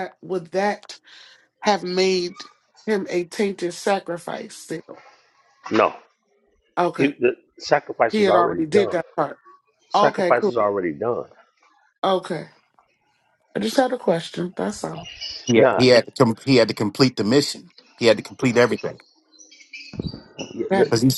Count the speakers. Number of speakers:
3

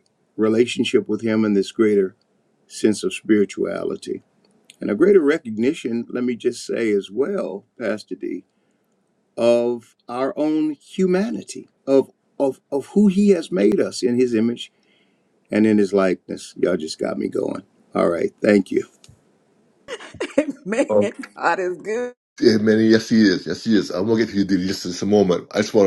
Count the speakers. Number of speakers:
3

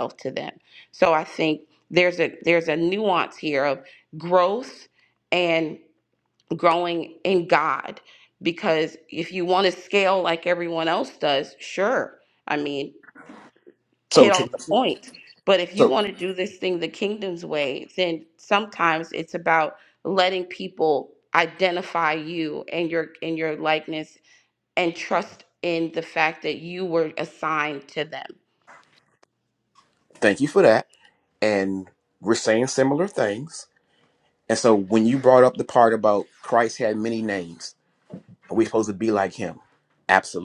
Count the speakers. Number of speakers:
2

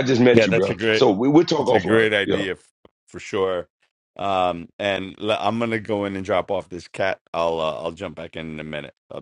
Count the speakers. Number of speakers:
2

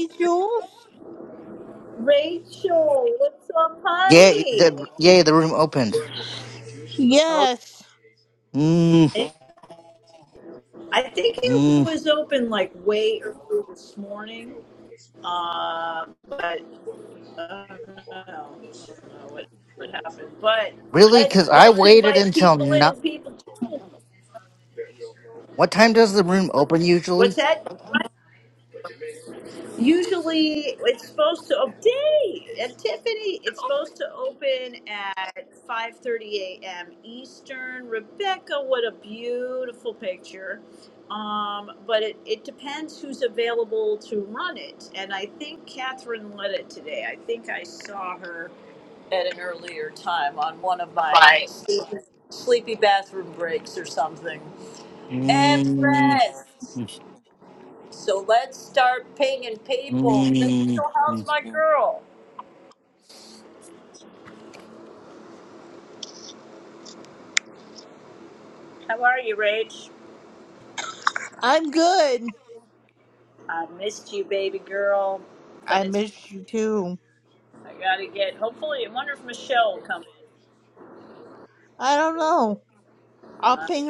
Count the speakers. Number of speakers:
3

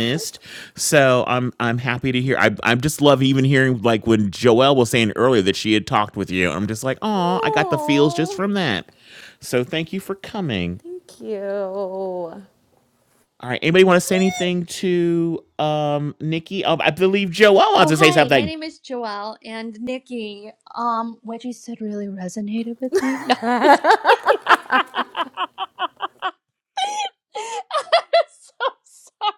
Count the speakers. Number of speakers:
3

